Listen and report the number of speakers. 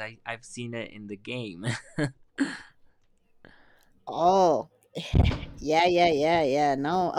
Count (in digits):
2